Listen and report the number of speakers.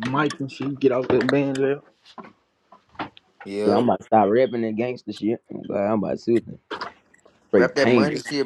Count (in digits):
3